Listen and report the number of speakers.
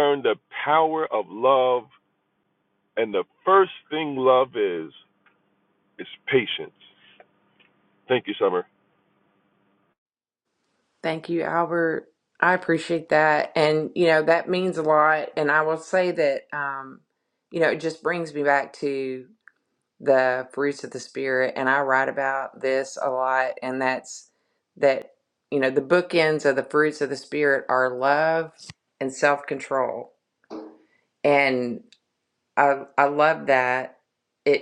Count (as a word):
two